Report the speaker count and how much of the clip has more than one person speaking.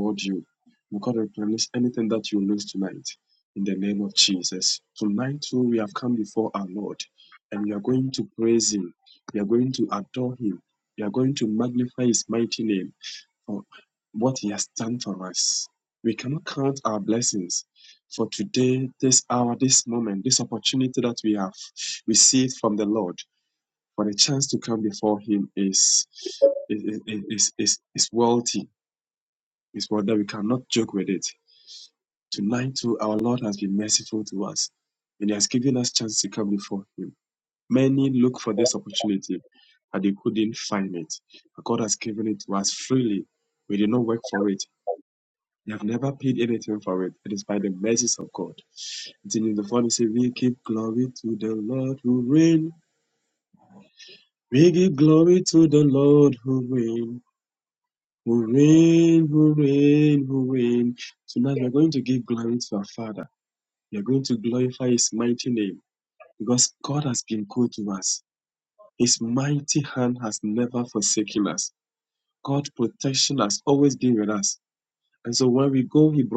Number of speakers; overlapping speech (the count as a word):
one, no overlap